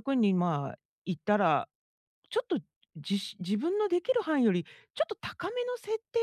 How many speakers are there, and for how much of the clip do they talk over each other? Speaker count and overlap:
1, no overlap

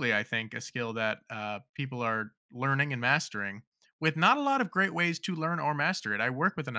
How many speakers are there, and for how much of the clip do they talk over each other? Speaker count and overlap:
1, no overlap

